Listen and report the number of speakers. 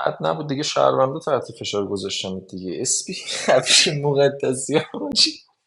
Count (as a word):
one